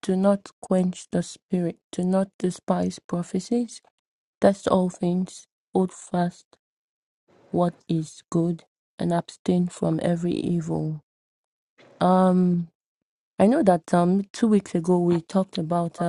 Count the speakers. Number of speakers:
1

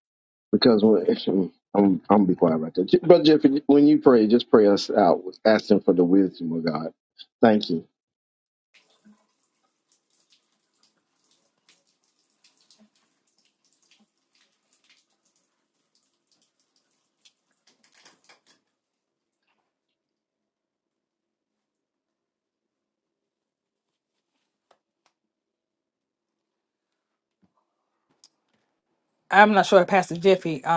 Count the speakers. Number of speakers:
2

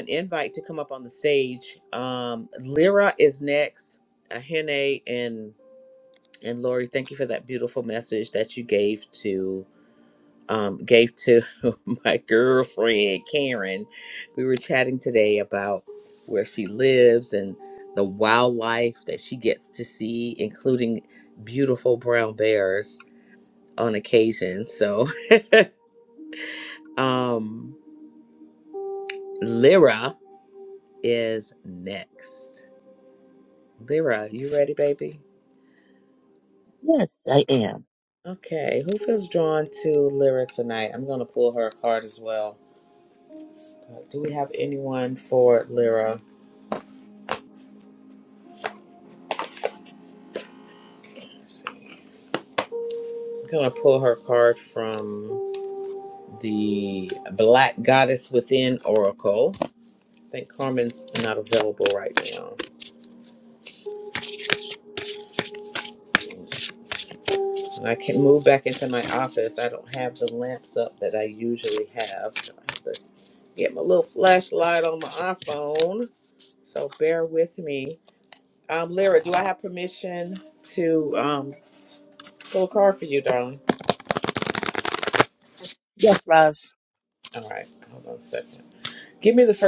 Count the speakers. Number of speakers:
2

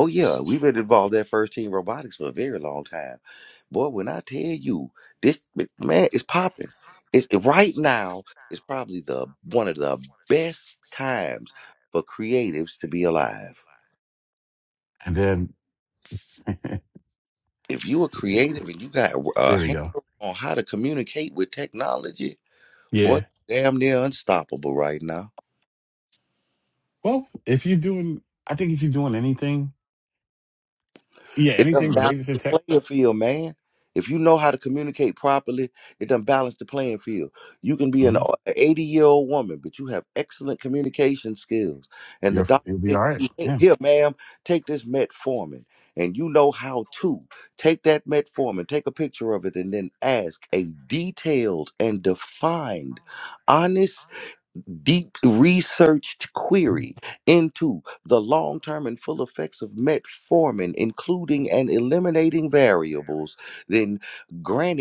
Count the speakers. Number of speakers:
2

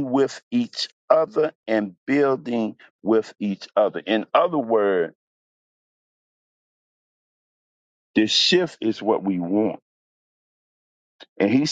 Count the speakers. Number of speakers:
1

